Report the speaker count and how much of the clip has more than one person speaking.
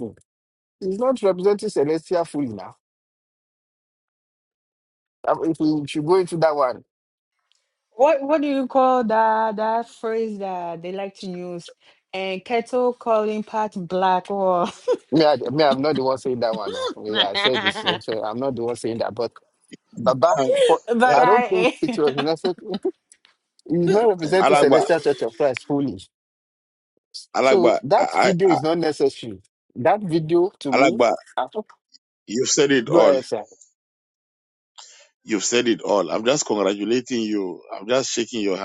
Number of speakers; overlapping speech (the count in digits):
3, about 11%